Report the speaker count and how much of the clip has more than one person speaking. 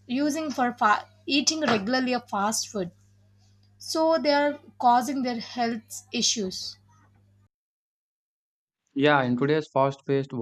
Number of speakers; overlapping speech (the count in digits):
2, no overlap